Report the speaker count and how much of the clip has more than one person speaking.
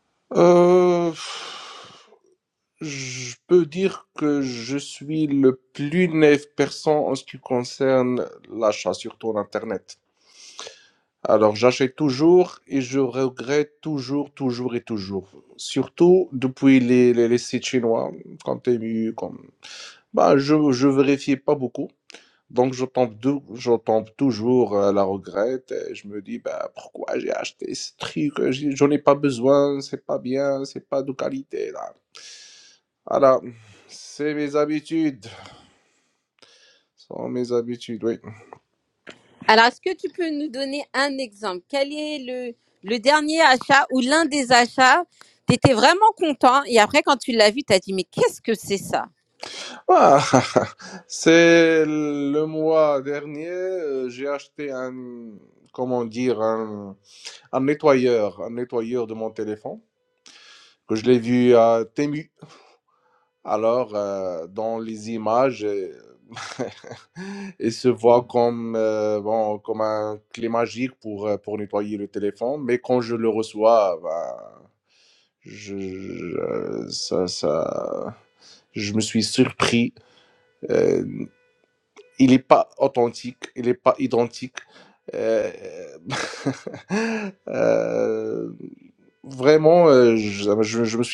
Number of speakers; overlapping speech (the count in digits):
2, no overlap